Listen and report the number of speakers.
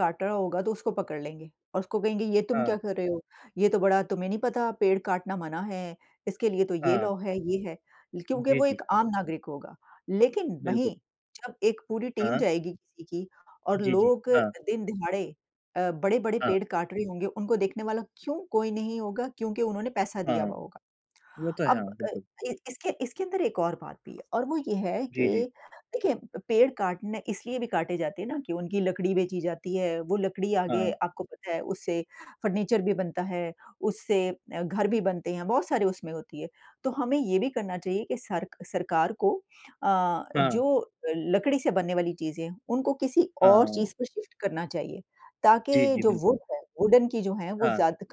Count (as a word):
two